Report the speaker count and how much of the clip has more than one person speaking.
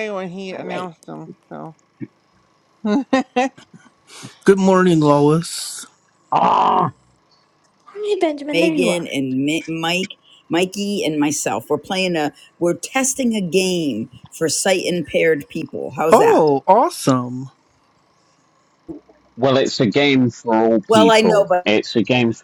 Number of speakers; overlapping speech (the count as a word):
five, about 9%